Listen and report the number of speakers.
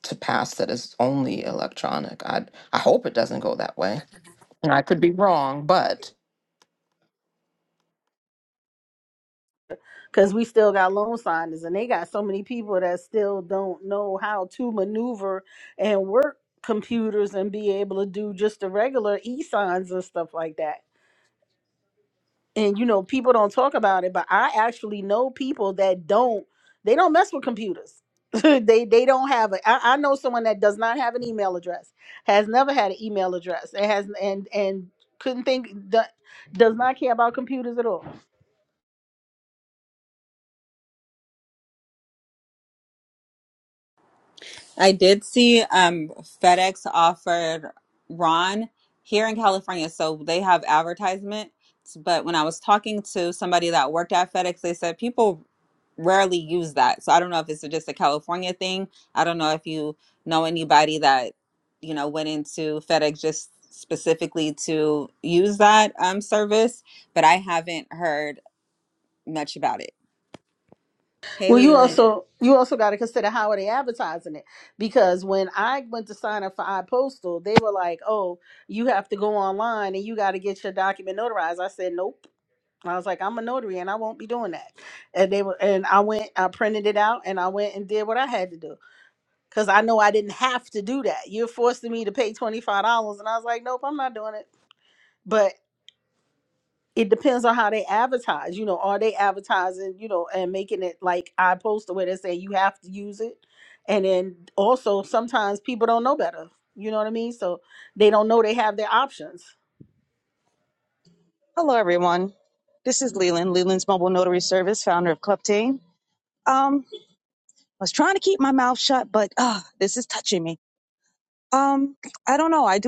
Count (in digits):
4